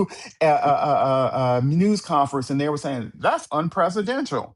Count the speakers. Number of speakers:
1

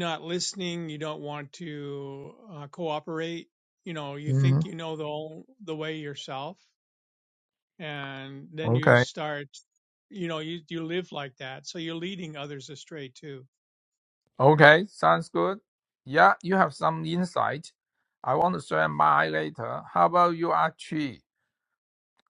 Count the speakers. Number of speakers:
2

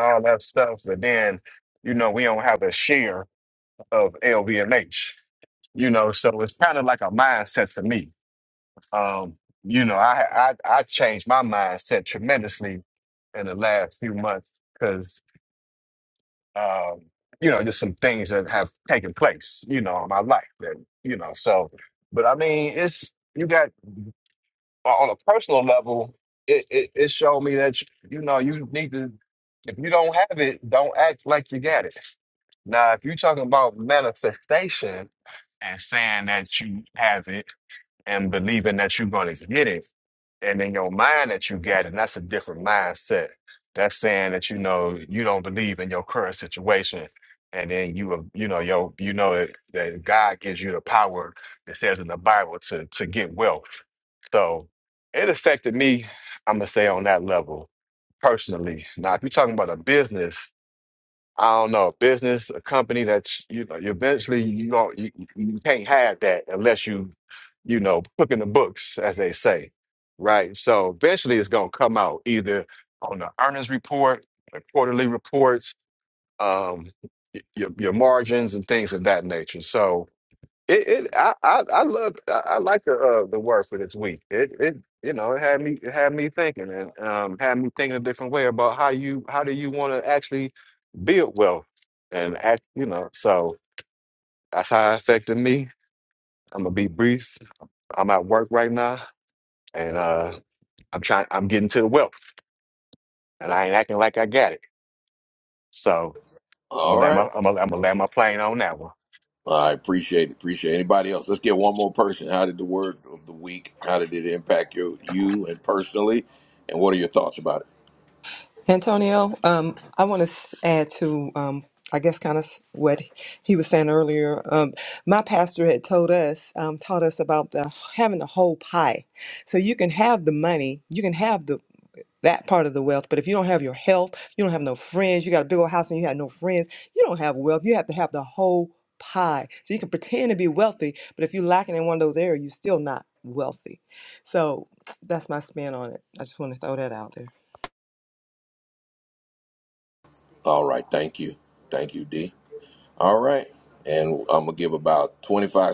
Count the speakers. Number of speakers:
3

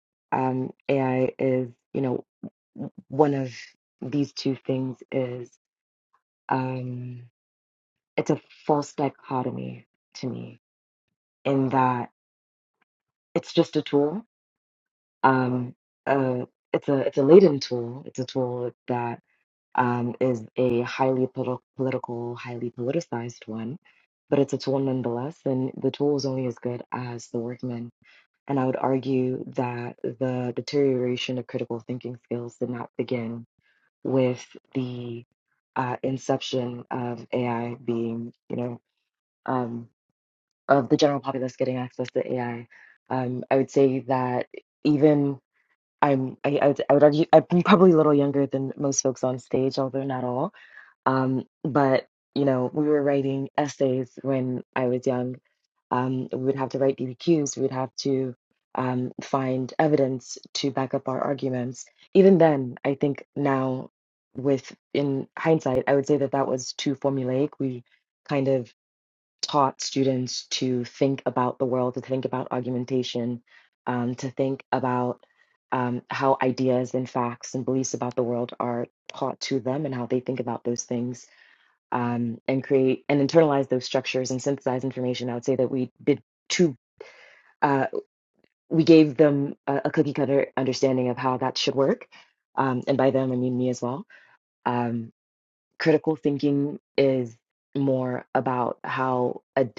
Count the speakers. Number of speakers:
1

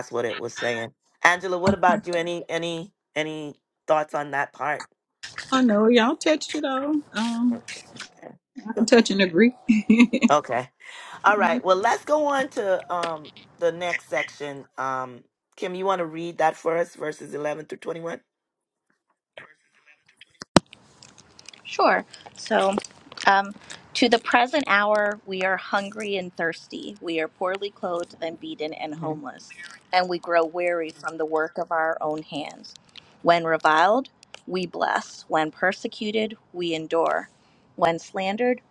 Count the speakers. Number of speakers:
3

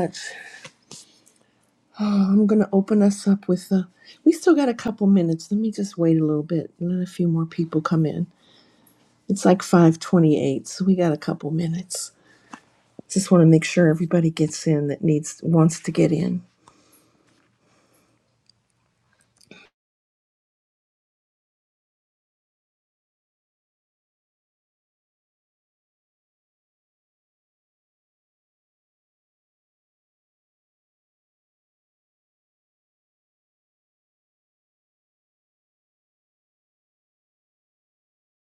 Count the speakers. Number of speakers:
1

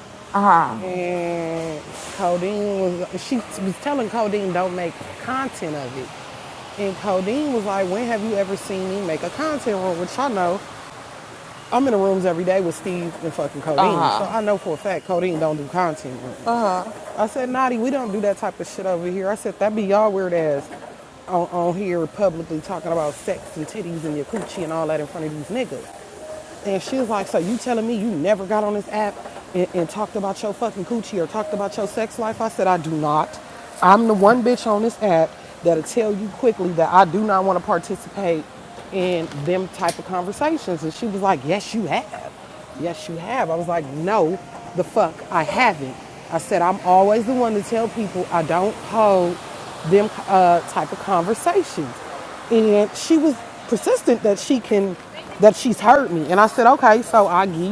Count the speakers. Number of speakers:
2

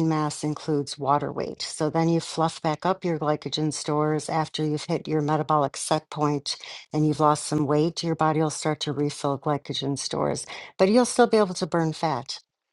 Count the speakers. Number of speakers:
1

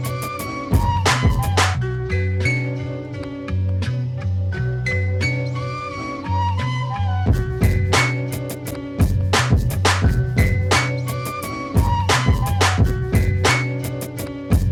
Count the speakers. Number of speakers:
0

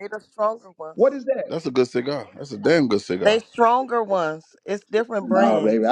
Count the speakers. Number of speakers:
3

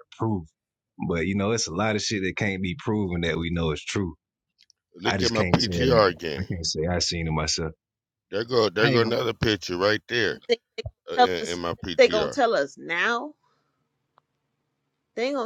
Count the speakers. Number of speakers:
3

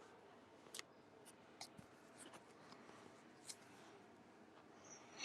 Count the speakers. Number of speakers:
0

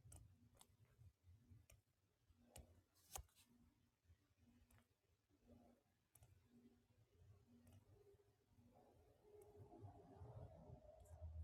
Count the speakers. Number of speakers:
0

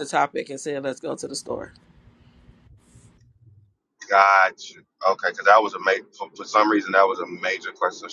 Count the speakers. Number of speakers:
2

